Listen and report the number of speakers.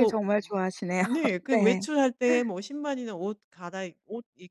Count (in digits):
2